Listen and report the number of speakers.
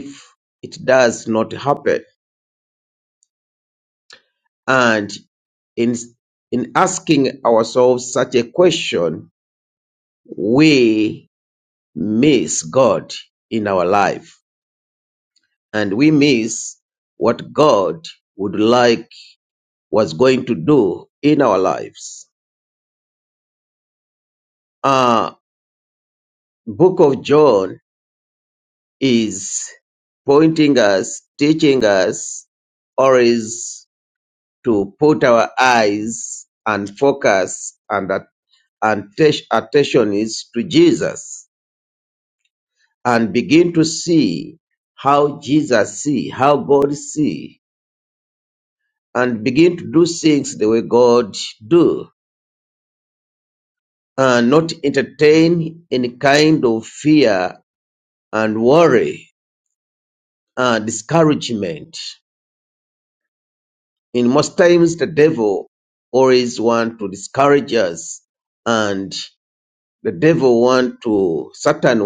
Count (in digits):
1